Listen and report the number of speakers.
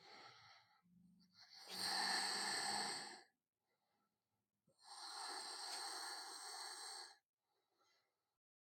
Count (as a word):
zero